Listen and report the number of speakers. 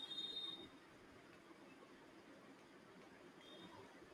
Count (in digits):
0